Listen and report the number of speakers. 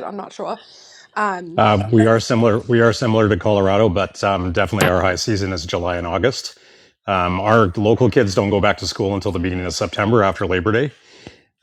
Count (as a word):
two